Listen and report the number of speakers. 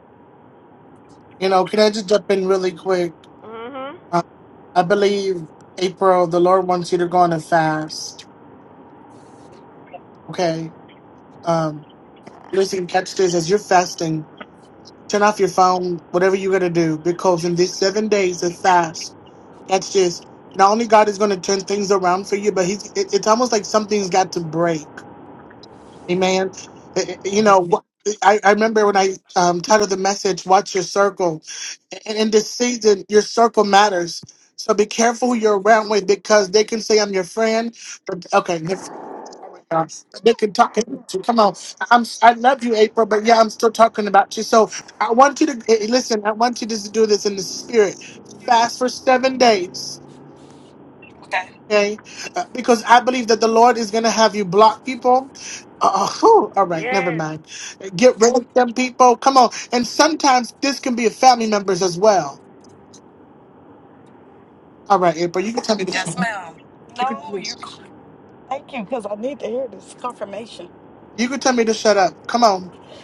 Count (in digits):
3